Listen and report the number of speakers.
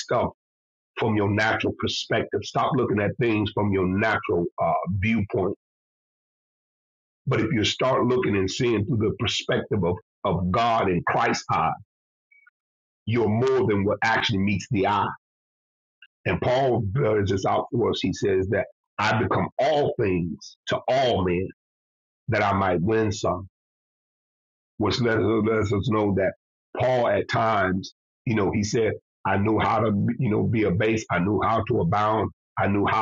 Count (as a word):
one